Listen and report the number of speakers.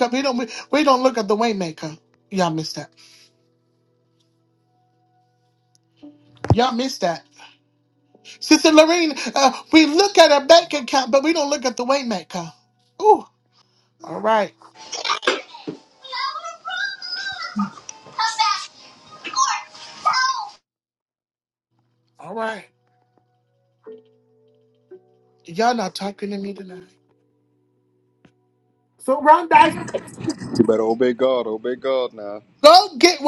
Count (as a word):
three